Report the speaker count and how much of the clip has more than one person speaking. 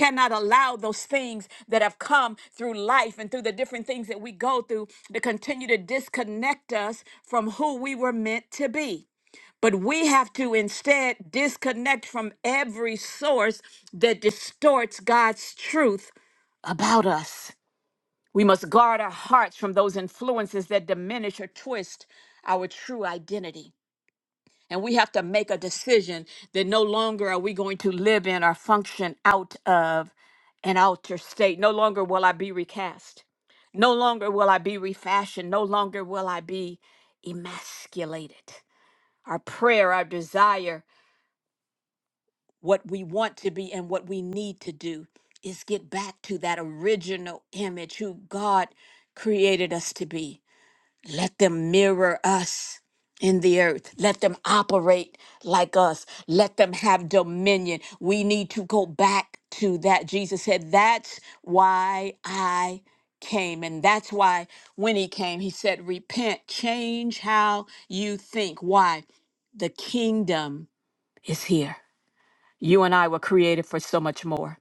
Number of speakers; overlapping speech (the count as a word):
one, no overlap